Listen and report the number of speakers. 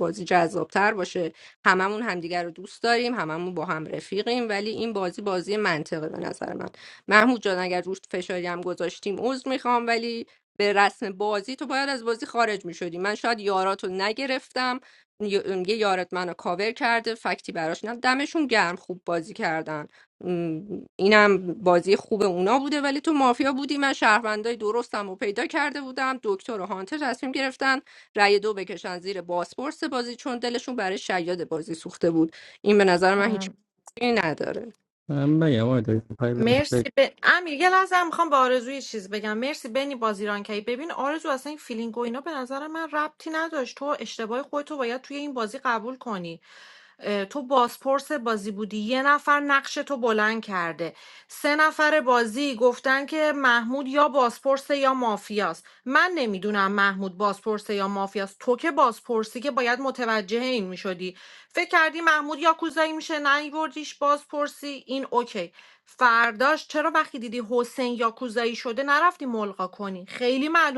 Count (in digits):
3